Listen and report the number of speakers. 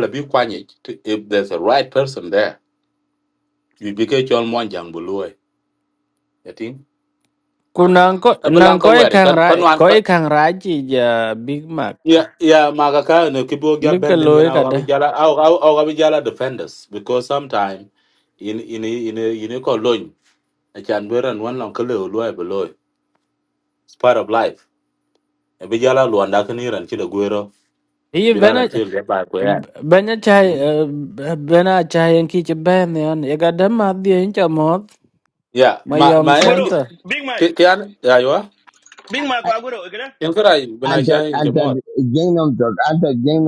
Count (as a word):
four